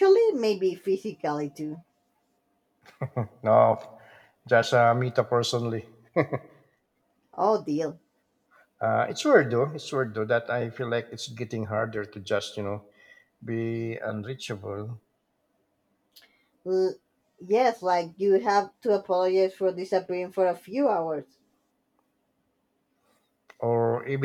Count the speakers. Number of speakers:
2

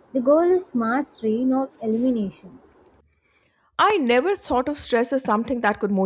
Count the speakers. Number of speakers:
2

